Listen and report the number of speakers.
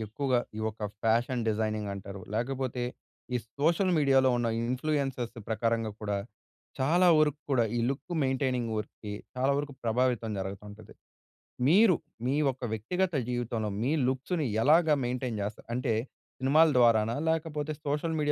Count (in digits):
1